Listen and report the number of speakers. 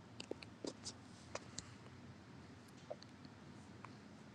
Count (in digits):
0